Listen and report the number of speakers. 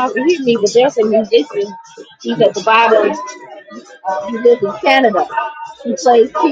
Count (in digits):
1